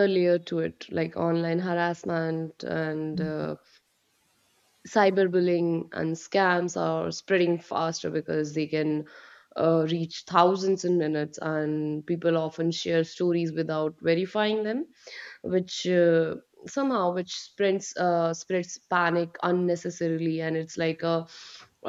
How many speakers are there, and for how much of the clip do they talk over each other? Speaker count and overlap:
1, no overlap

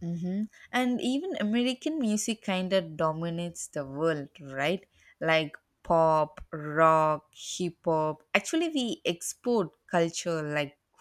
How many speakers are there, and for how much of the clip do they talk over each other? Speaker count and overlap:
1, no overlap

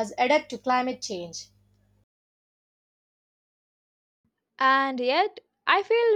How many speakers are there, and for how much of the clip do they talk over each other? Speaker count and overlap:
2, no overlap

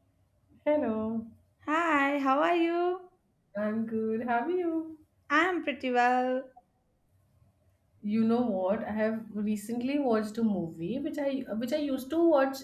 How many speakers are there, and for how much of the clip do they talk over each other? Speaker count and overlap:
2, no overlap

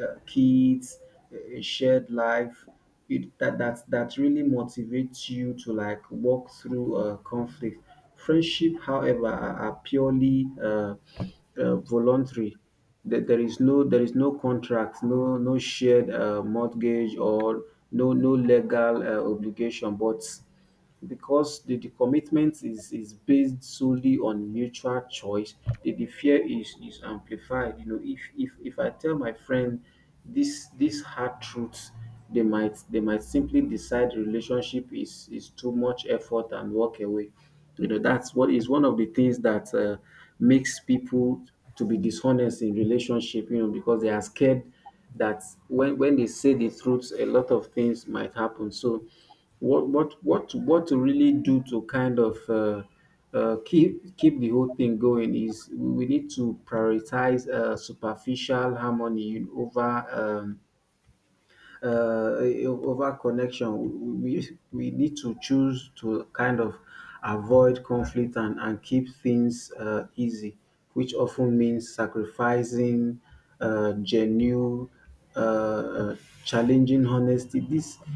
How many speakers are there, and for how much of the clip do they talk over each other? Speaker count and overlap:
1, no overlap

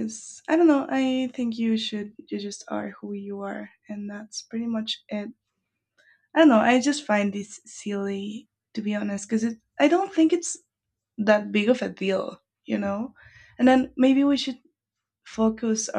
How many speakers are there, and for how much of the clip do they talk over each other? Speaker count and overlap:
1, no overlap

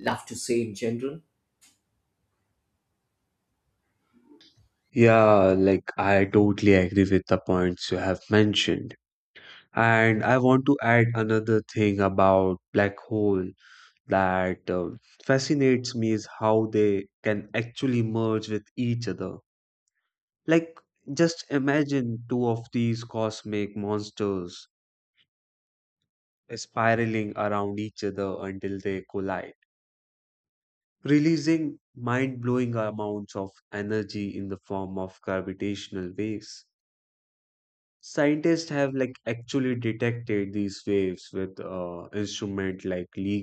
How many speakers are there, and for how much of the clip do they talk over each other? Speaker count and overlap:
2, no overlap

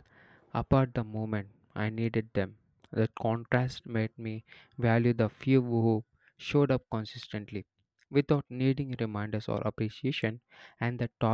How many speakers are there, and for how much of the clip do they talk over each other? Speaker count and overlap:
1, no overlap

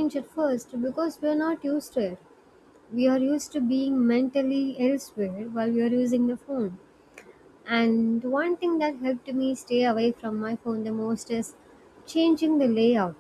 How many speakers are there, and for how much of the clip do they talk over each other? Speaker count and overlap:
1, no overlap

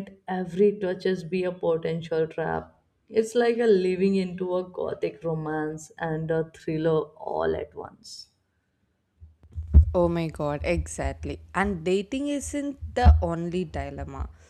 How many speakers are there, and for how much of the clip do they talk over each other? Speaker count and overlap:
2, no overlap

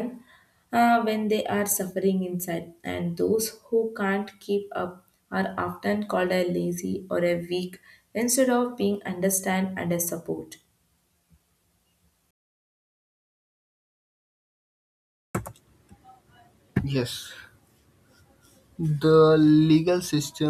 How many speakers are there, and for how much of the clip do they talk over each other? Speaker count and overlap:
2, no overlap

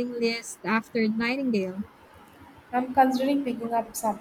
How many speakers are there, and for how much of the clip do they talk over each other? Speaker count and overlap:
2, no overlap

